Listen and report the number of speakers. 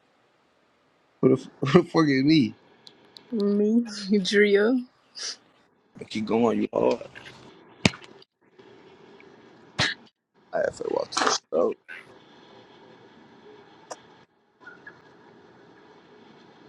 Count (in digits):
3